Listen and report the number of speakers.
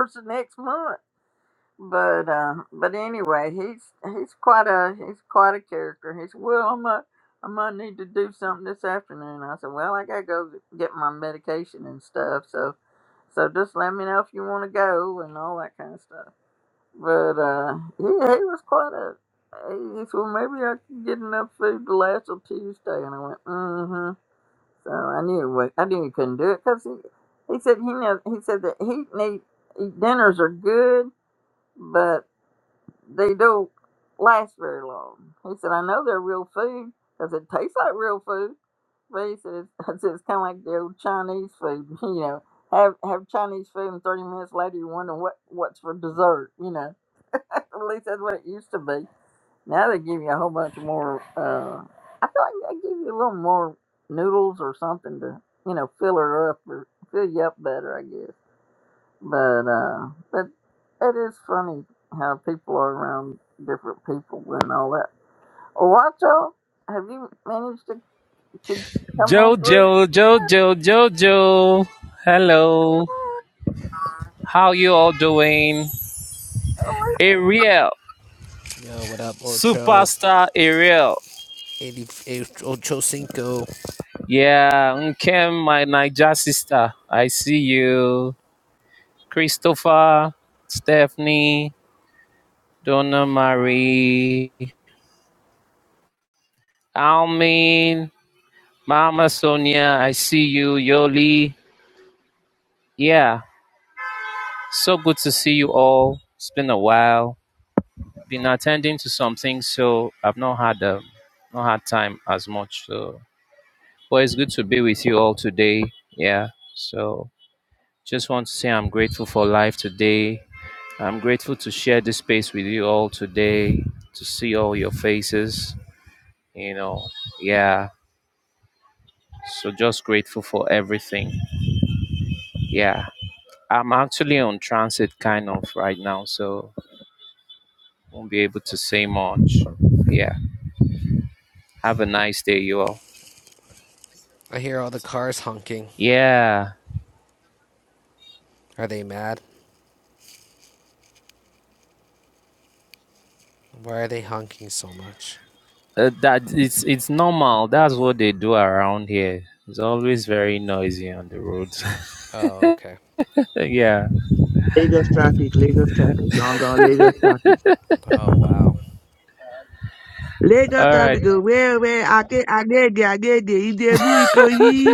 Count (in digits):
4